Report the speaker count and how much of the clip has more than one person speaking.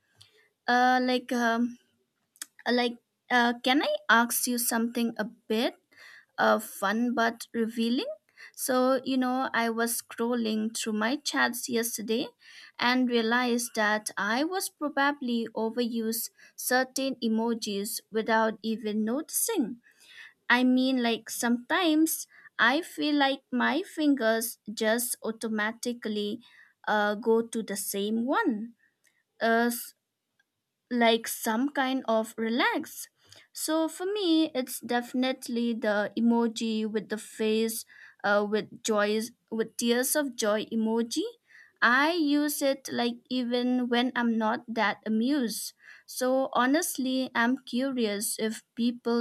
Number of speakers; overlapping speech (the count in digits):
1, no overlap